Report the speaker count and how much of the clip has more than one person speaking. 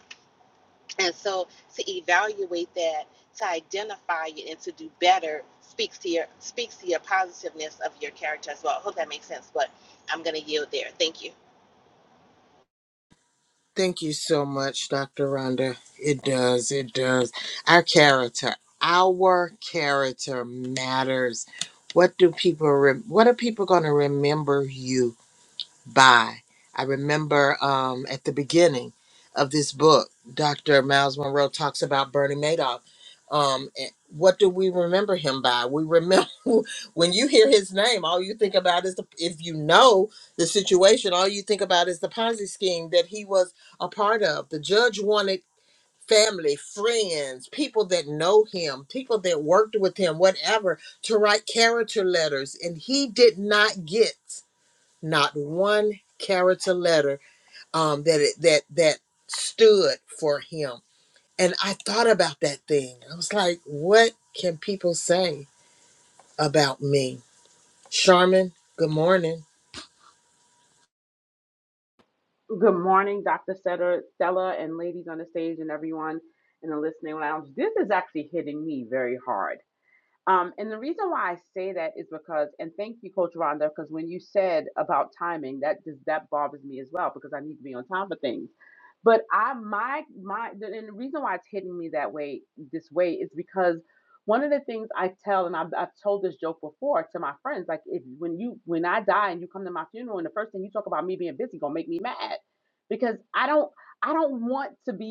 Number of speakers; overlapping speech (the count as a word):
three, no overlap